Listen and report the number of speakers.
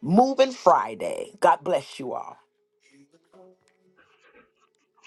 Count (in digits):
1